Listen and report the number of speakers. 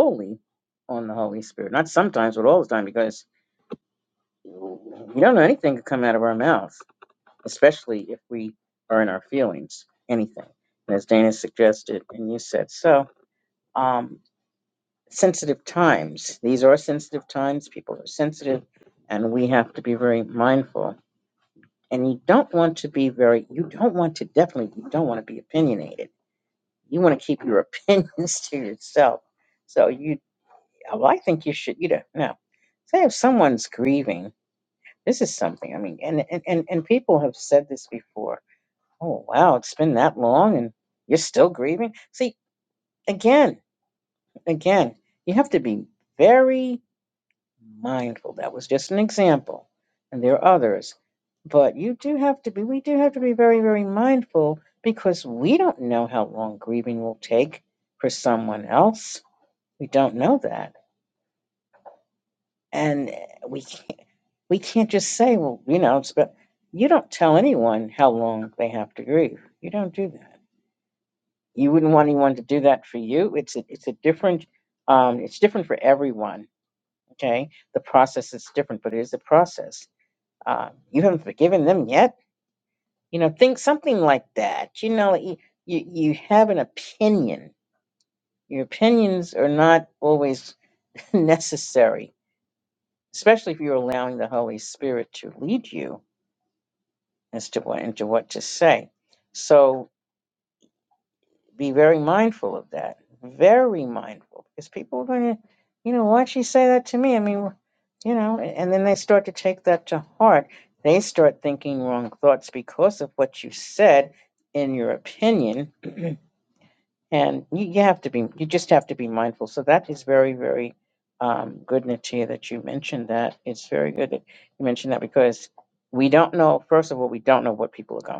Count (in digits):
1